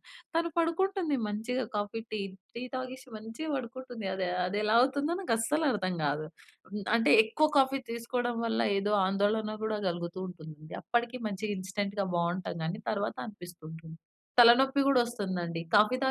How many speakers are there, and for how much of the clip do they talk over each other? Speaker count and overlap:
1, no overlap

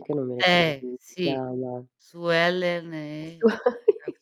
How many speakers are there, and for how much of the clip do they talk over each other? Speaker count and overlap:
2, about 15%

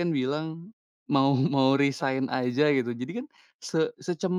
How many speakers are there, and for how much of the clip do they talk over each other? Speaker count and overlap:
1, no overlap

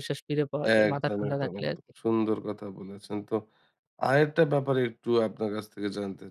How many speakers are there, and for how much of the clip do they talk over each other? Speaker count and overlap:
2, about 17%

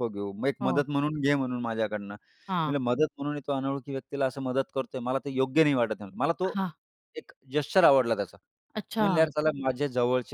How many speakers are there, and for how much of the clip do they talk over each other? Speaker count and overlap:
2, about 6%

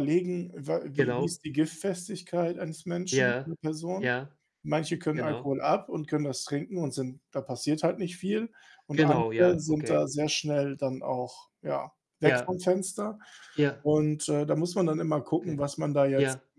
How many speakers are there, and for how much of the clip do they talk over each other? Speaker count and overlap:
2, about 17%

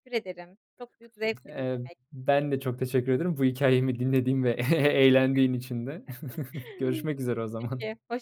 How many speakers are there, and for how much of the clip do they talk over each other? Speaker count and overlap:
2, about 8%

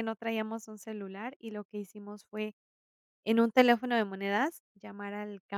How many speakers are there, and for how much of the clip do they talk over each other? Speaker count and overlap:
1, no overlap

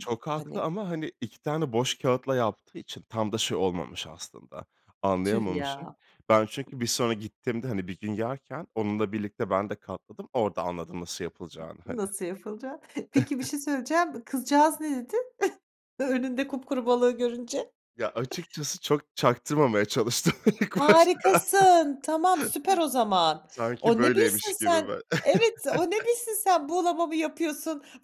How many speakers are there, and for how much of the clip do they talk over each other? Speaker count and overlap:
2, about 12%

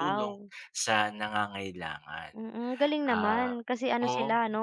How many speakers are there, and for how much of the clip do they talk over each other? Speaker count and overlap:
2, about 28%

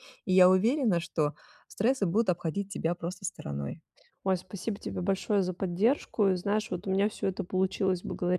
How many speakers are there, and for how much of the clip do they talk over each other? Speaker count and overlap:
2, no overlap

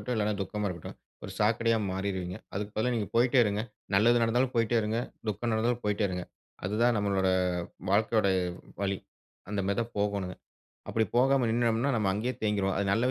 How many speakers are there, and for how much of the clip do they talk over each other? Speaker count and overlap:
1, no overlap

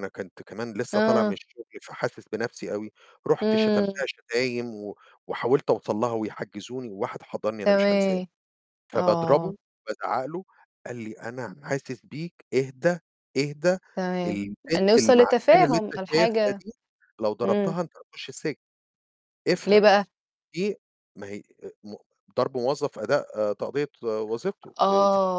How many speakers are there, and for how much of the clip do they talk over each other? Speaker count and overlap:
2, about 20%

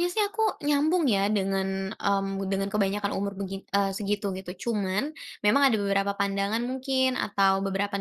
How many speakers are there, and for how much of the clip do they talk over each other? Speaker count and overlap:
1, no overlap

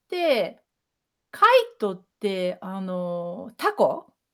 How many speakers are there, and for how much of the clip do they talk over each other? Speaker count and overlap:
1, no overlap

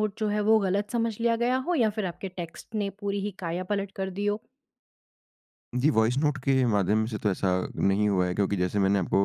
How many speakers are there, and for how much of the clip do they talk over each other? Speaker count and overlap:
2, no overlap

